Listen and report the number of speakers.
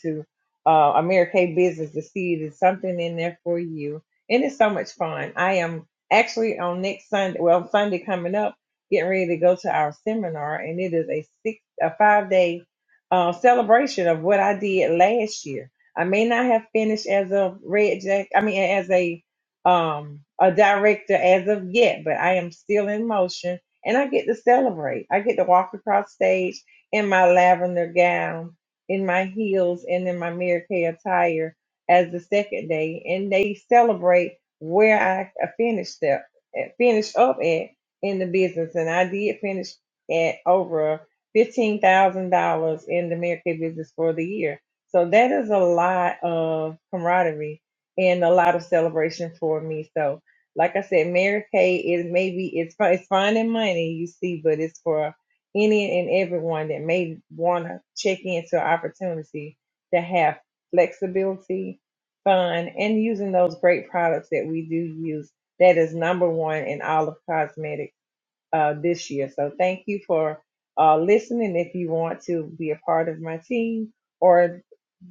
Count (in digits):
1